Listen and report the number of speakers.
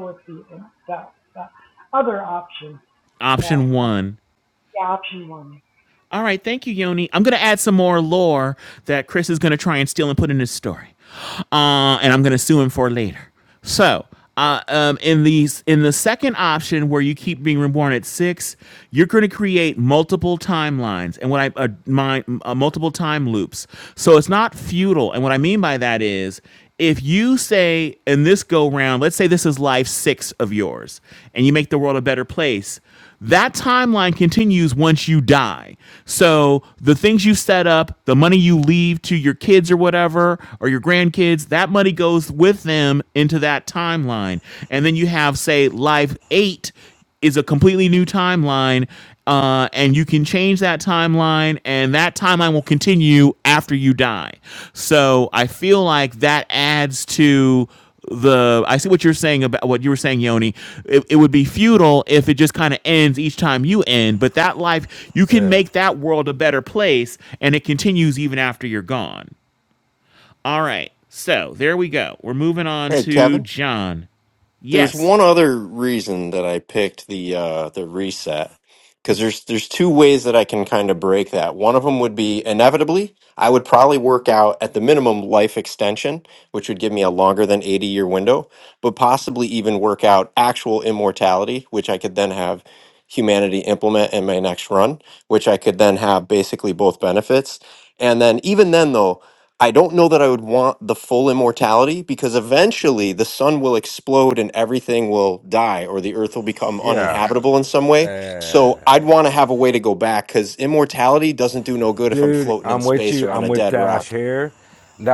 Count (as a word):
four